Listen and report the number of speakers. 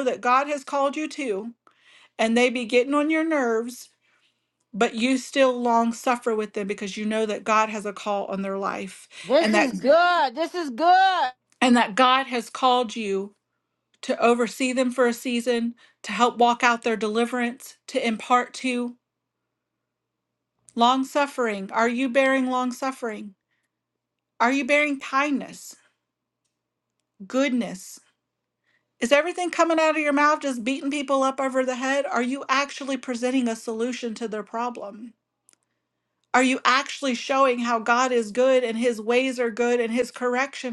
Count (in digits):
2